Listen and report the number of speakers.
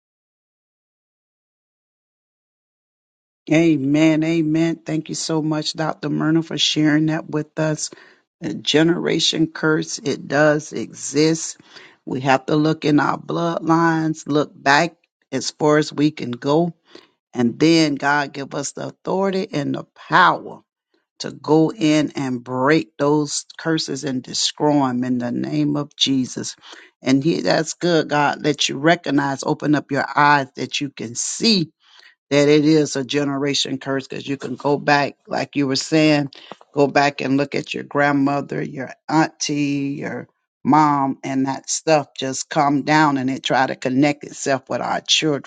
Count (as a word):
one